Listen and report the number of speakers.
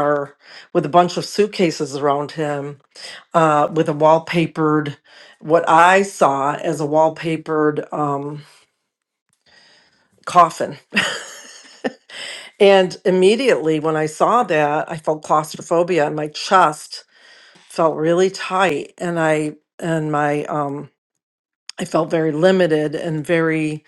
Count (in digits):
1